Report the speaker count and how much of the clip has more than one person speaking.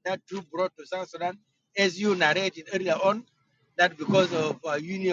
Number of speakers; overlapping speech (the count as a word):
one, no overlap